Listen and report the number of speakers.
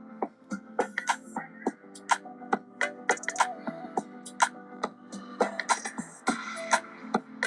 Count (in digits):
0